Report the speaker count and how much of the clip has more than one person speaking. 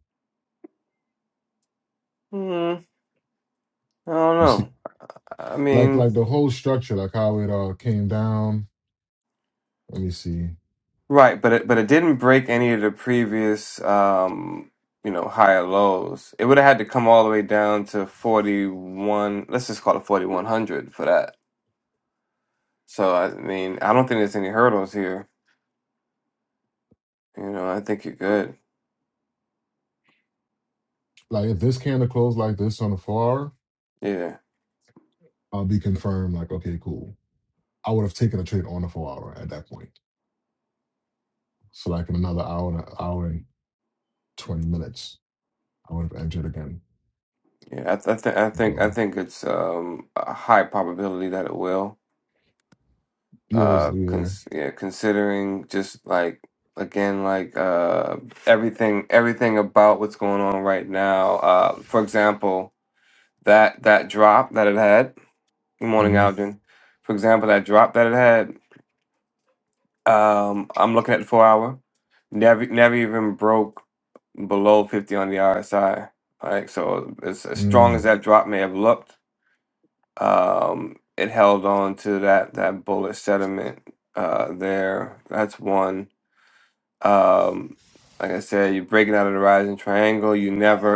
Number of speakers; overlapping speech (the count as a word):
two, about 3%